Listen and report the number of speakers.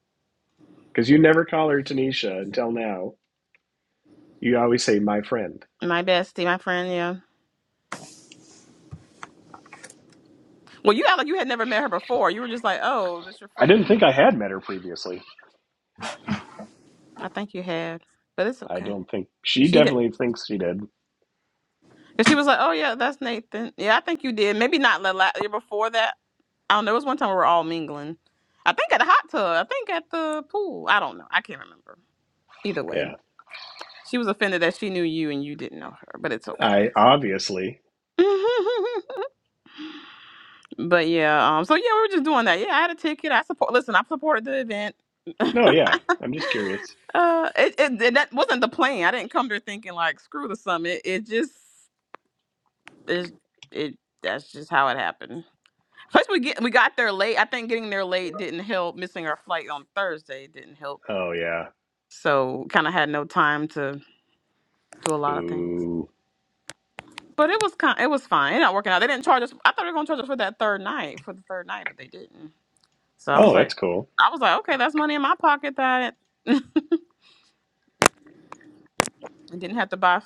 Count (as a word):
two